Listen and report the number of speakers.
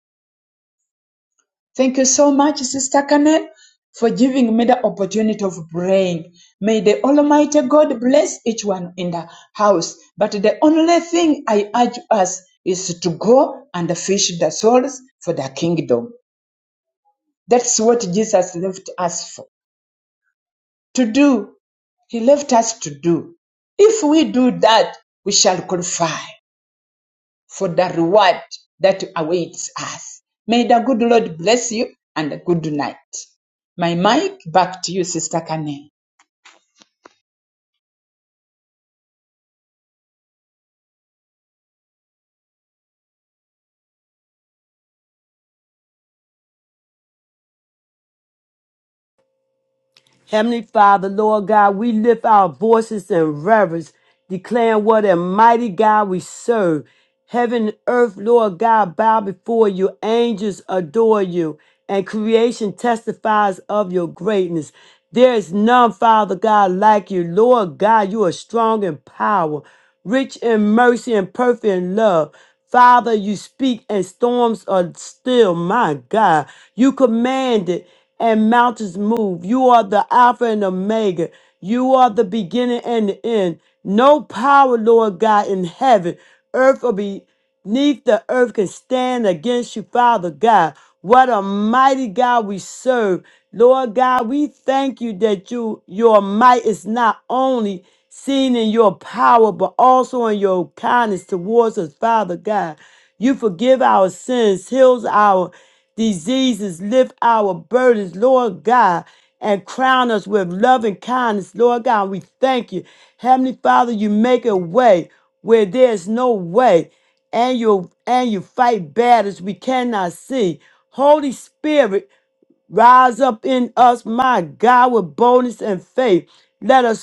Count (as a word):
two